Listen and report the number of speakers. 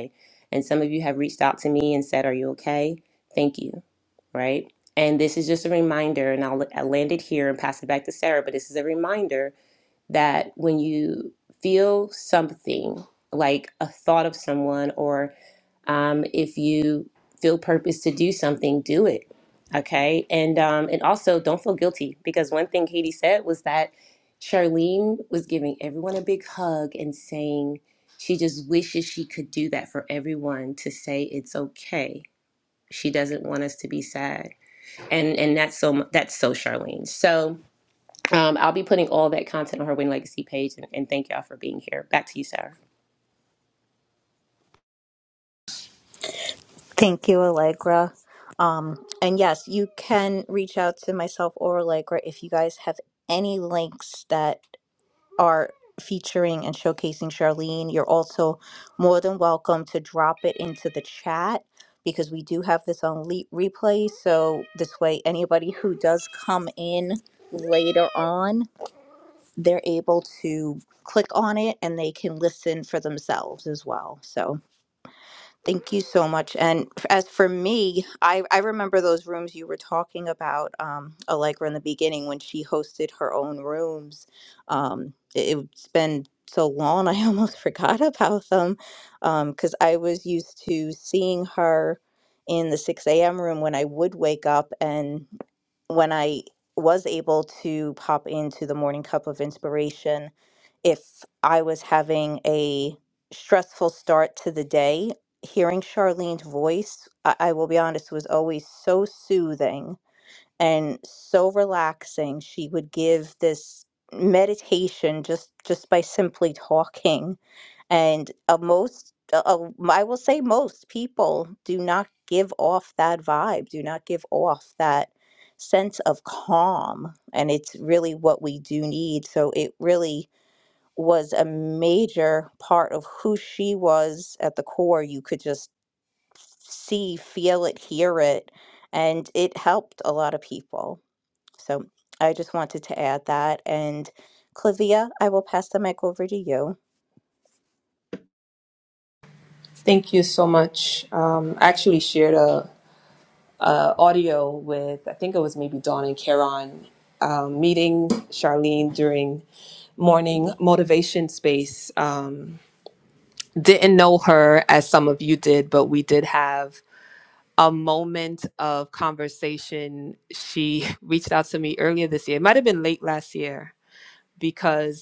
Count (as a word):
three